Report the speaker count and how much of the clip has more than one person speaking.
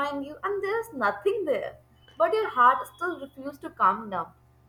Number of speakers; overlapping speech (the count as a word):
one, no overlap